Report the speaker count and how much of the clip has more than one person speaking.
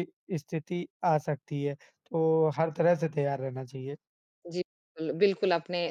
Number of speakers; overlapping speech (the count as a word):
two, no overlap